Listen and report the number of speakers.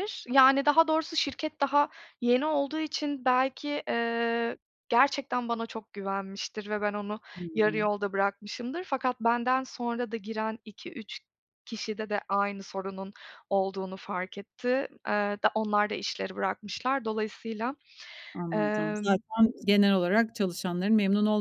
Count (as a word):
two